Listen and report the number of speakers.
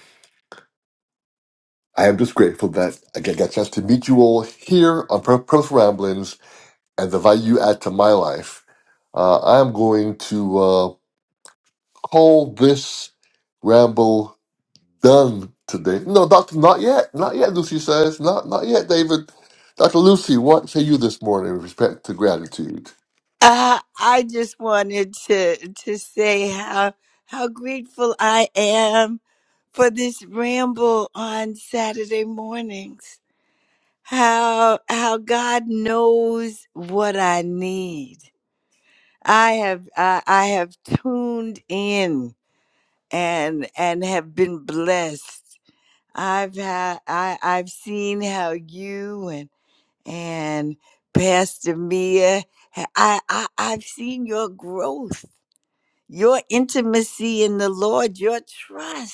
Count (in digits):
2